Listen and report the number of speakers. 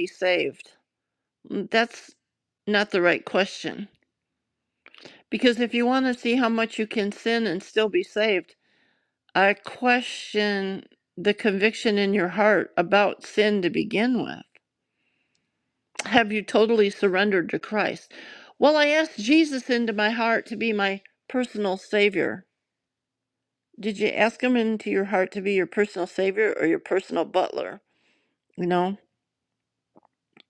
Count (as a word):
one